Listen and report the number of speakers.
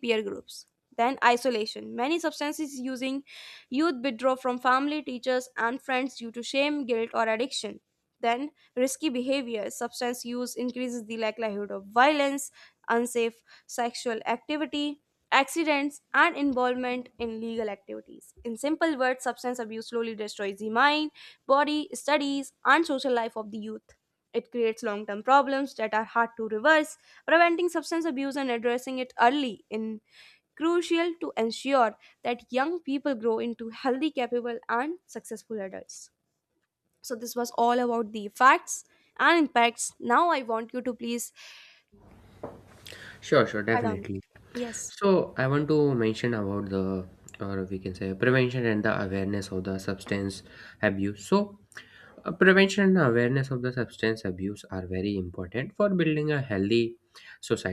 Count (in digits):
2